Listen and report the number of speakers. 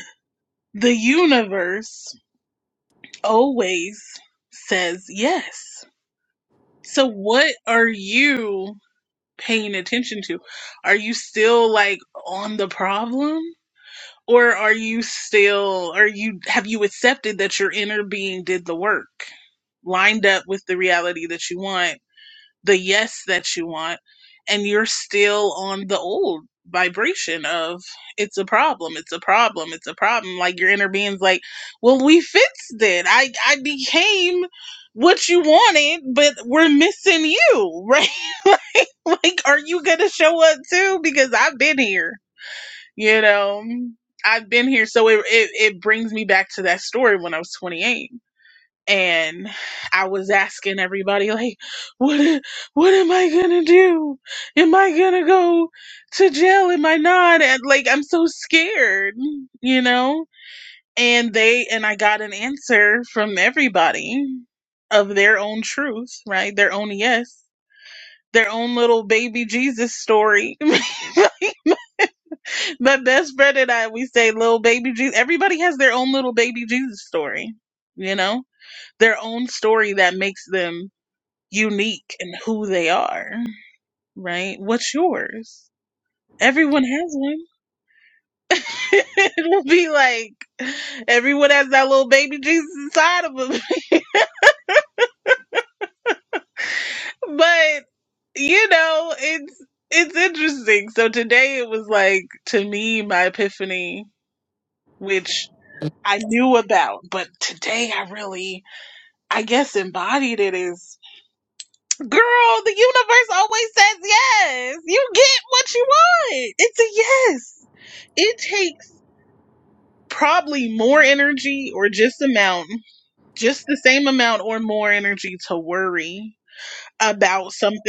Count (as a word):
one